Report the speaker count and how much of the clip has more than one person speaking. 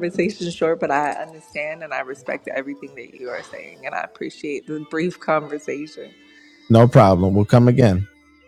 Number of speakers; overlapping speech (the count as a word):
two, no overlap